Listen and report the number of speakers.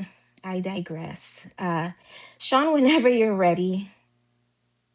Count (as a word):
one